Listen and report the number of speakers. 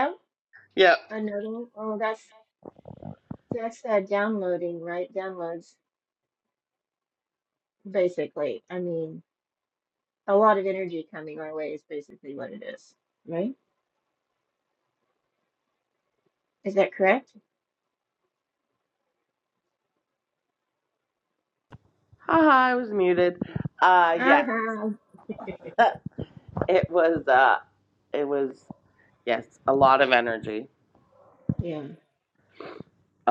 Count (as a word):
two